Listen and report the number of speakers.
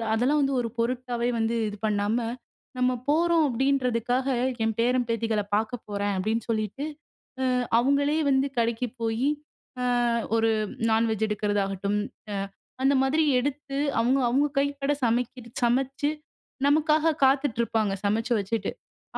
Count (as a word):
one